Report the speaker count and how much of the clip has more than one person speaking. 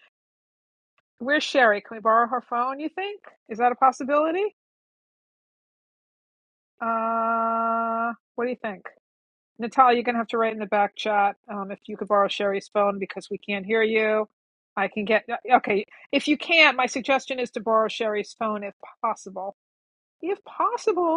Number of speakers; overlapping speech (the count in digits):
1, no overlap